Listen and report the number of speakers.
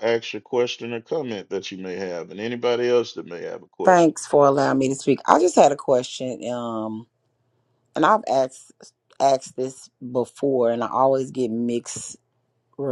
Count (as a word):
two